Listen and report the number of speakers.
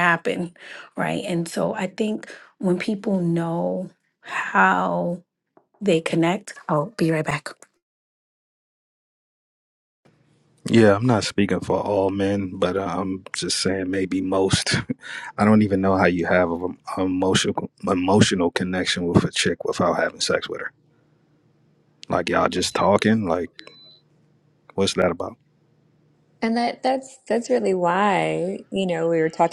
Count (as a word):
three